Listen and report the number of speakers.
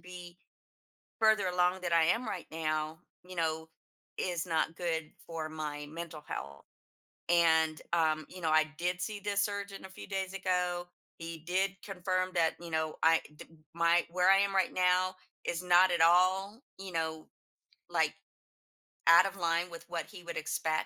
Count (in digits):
1